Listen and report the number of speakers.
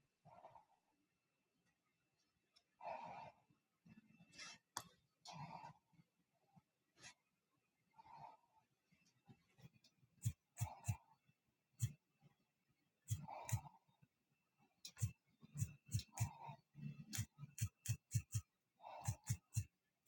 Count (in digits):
0